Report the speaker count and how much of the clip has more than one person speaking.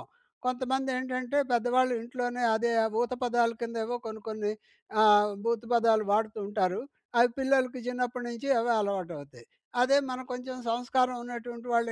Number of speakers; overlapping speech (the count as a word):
one, no overlap